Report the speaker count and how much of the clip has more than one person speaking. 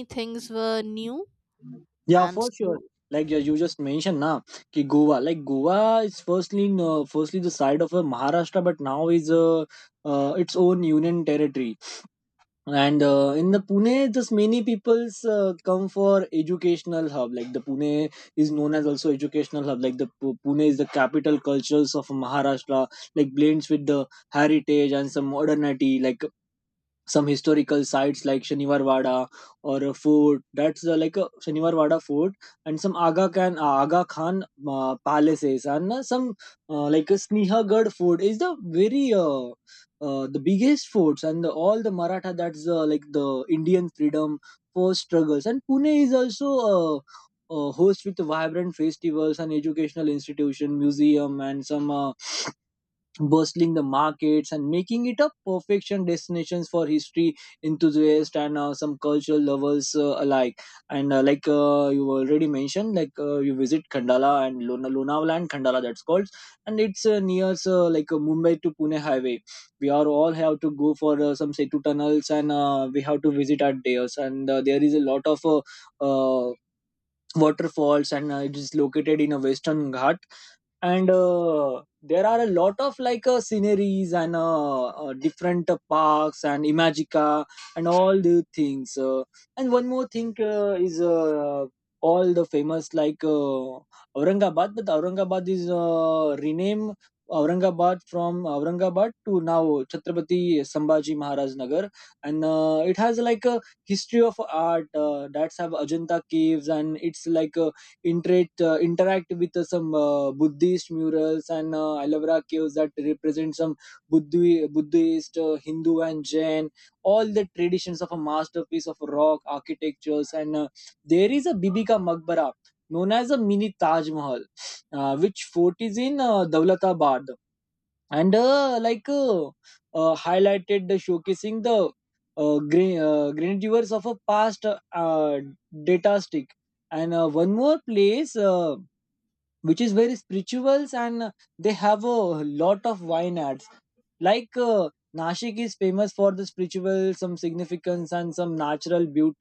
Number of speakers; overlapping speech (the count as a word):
two, under 1%